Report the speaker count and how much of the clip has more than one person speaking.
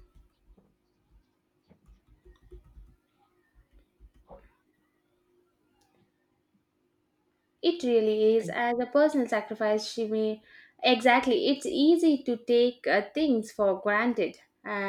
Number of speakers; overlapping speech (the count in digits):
1, no overlap